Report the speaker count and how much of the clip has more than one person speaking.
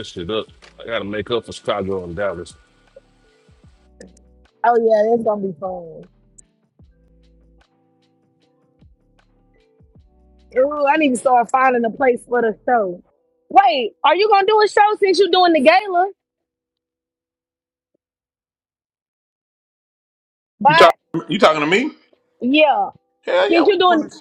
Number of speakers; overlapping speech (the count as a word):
three, about 4%